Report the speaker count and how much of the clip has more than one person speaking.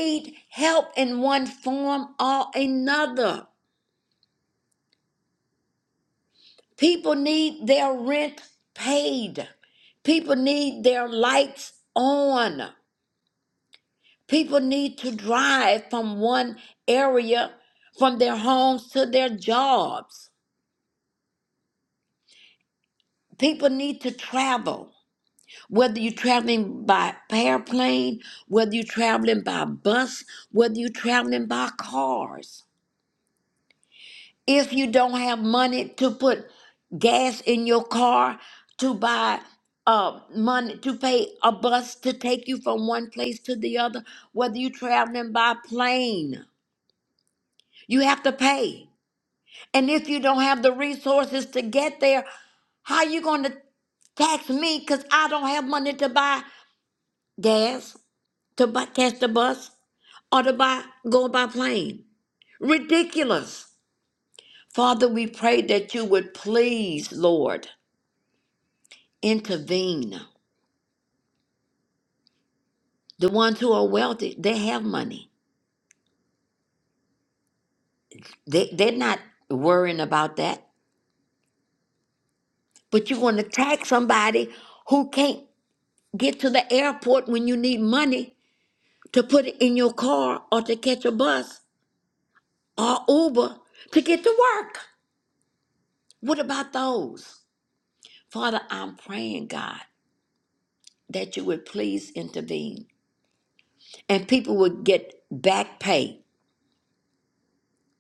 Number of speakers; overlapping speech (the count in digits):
1, no overlap